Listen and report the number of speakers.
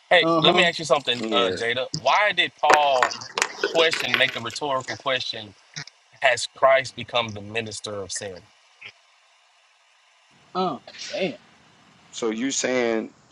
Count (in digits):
3